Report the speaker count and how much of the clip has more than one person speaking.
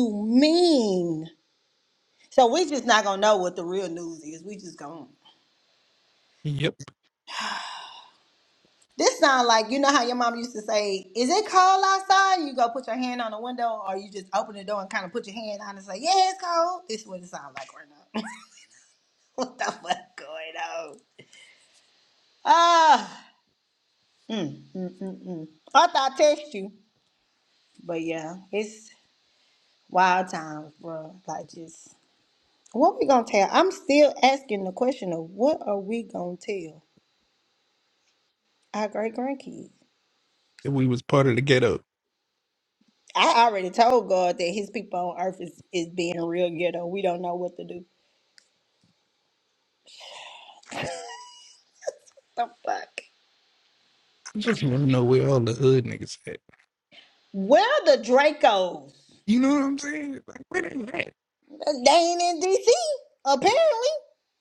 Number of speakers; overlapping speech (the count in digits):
2, no overlap